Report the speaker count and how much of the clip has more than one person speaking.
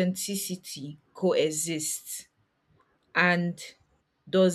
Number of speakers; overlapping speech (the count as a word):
one, no overlap